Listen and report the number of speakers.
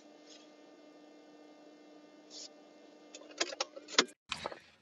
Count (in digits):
0